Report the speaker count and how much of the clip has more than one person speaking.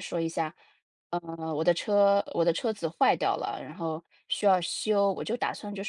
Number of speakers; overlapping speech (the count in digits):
1, no overlap